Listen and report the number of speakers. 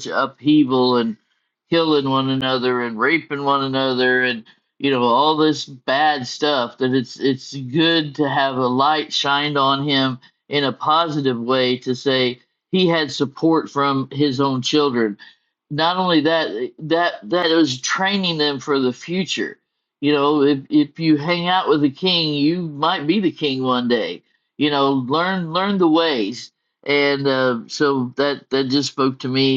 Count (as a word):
one